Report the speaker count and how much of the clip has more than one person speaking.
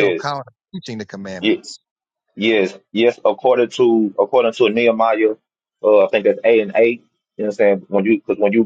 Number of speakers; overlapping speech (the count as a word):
two, about 4%